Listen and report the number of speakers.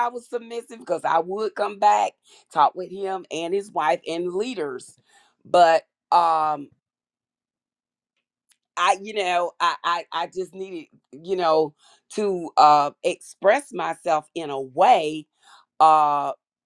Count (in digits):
1